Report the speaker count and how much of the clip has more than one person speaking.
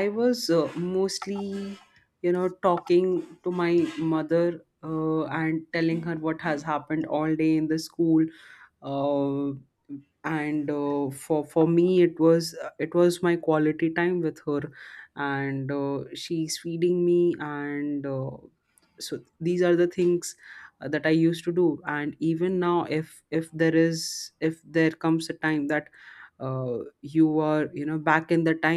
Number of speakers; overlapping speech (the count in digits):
1, no overlap